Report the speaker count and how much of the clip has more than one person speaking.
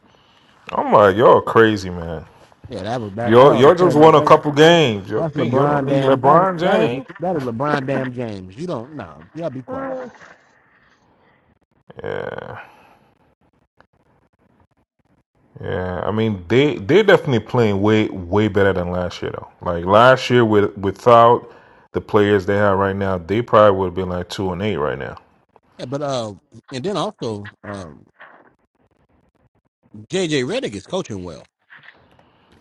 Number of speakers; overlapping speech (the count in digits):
2, about 9%